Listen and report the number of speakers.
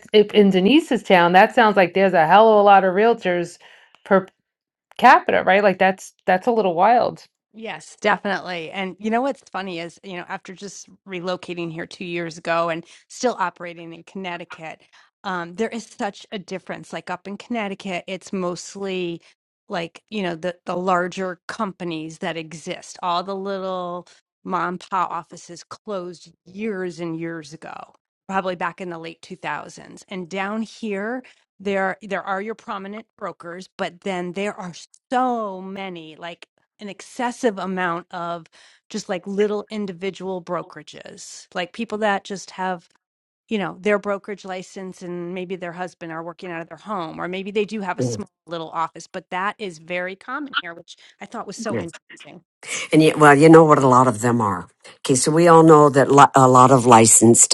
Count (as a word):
three